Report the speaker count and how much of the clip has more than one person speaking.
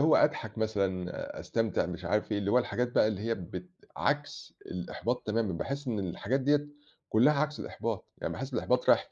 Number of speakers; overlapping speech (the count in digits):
1, no overlap